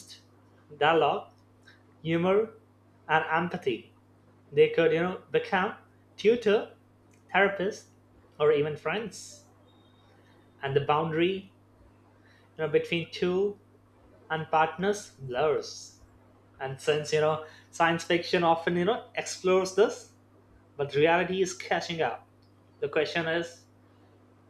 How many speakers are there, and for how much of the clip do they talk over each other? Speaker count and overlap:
one, no overlap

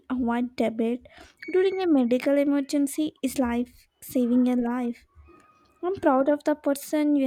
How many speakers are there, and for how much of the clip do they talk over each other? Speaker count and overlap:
one, no overlap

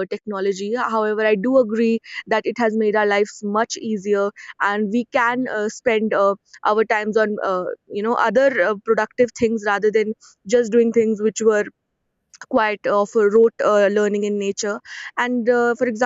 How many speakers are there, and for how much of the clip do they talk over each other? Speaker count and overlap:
one, no overlap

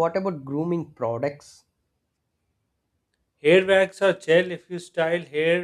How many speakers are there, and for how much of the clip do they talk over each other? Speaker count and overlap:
two, no overlap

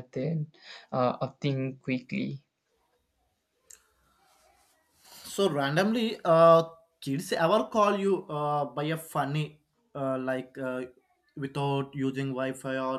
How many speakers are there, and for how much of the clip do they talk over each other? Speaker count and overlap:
two, no overlap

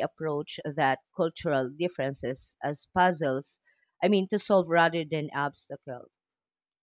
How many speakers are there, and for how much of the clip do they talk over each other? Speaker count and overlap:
one, no overlap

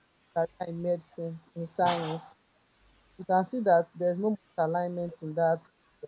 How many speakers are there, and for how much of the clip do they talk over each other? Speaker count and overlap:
one, no overlap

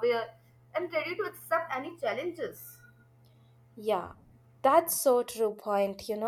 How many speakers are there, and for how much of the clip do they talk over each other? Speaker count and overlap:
two, no overlap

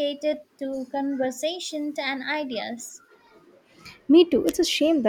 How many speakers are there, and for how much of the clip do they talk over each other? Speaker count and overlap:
two, no overlap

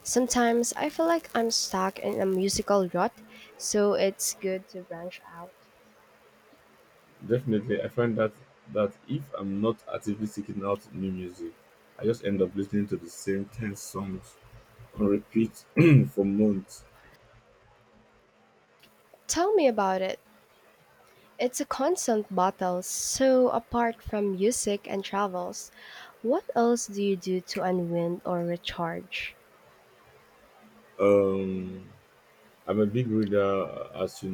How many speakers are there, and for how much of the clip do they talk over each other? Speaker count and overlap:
two, no overlap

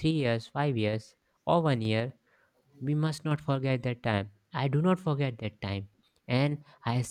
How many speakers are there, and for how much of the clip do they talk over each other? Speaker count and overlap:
one, no overlap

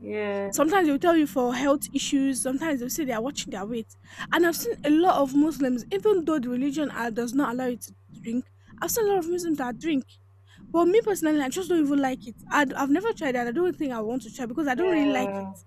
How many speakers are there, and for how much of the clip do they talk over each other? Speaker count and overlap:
two, about 4%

